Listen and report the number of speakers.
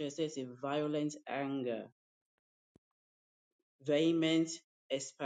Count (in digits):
1